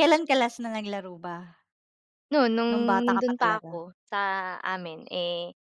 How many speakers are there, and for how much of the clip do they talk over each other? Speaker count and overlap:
2, about 19%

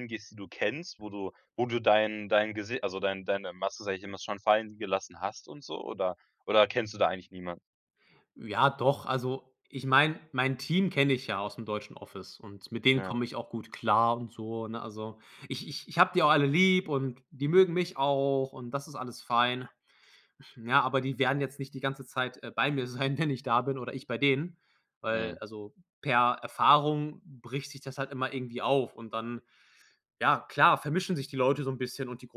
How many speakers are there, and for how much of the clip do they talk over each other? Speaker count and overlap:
2, about 1%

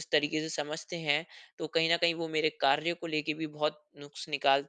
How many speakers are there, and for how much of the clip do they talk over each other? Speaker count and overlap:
1, no overlap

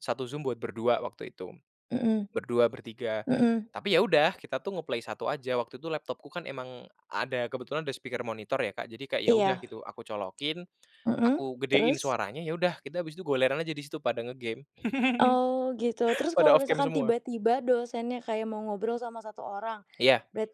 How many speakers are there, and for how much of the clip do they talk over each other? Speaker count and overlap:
2, about 9%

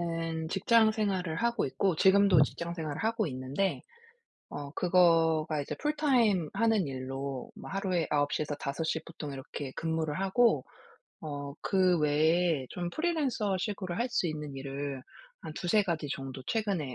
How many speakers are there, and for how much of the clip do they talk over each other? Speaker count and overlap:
1, no overlap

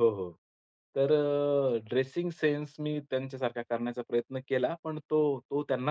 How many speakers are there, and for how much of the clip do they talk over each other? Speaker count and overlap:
1, no overlap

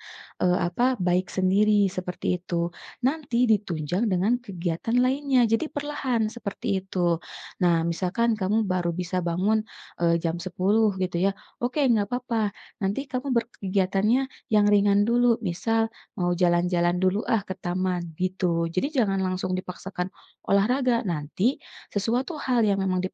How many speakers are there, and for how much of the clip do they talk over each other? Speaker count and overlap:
1, no overlap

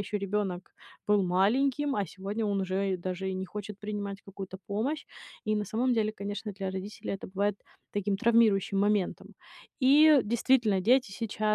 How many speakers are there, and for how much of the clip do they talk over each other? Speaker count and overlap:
1, no overlap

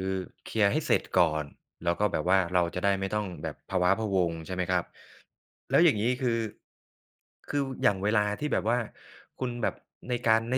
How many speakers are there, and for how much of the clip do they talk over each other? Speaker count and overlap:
1, no overlap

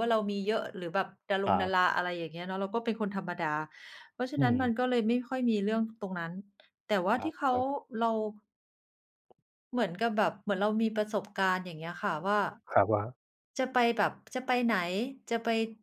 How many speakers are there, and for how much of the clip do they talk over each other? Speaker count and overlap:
2, about 6%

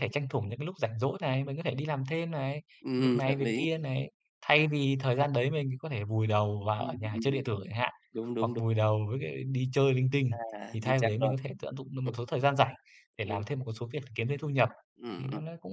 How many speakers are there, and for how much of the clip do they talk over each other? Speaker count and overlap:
2, about 17%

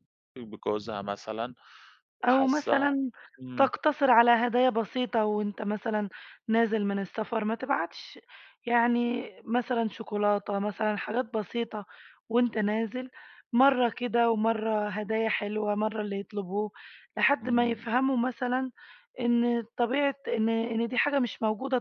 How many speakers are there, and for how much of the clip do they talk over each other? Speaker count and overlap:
2, about 6%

